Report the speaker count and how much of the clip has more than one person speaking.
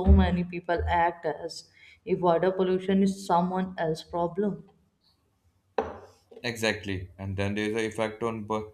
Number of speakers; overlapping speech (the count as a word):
two, no overlap